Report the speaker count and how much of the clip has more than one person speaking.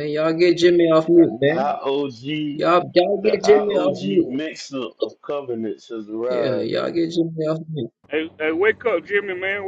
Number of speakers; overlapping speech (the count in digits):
3, about 21%